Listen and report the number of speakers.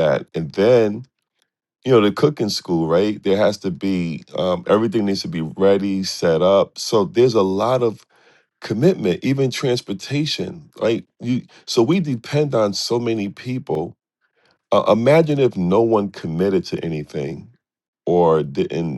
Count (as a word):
one